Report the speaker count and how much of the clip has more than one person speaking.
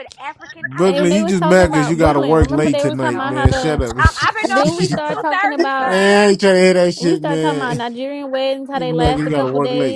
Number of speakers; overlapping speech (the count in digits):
3, about 70%